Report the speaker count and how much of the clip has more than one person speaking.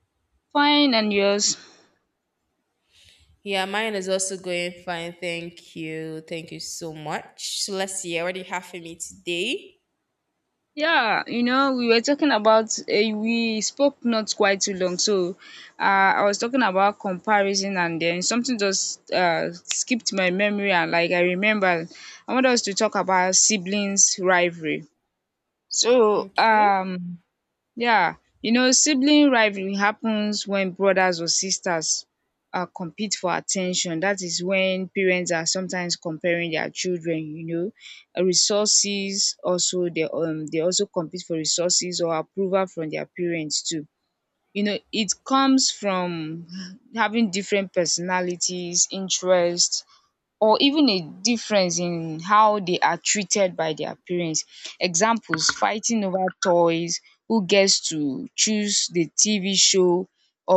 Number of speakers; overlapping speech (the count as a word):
two, about 1%